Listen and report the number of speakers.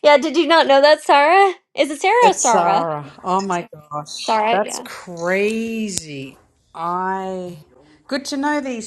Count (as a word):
two